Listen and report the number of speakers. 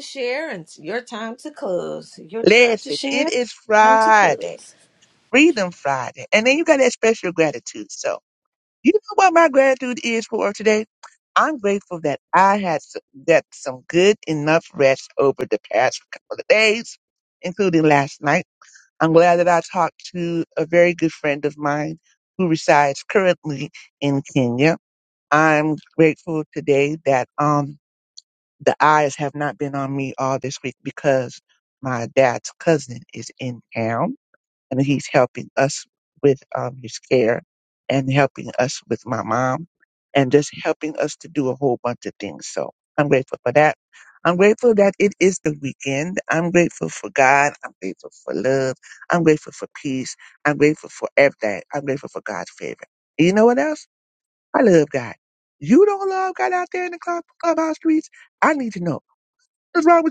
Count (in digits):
2